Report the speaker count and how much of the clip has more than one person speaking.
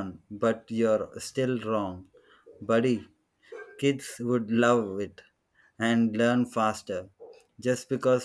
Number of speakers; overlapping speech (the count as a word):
one, no overlap